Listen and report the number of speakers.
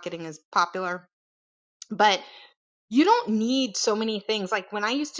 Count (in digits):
1